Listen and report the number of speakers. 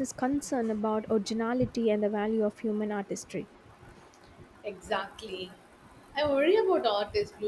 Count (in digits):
2